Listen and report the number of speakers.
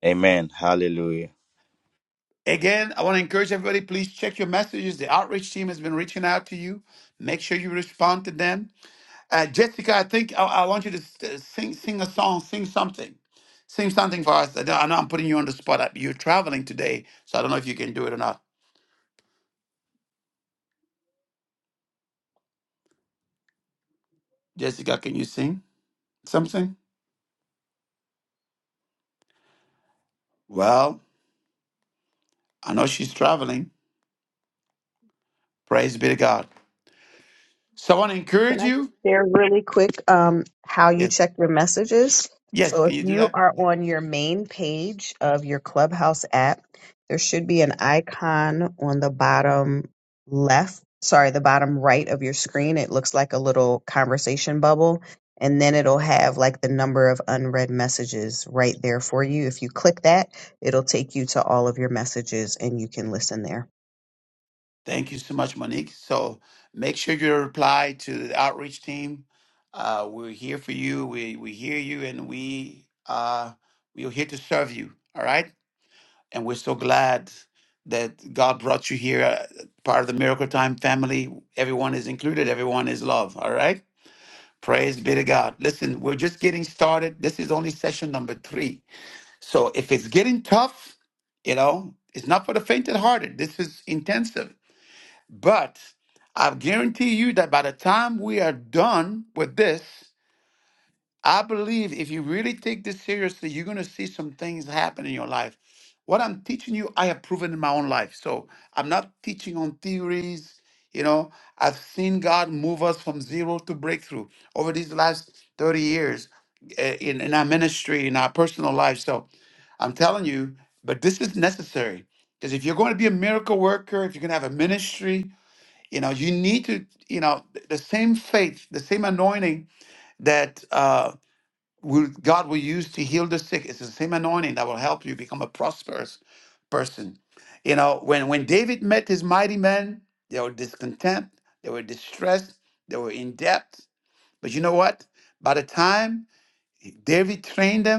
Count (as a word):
three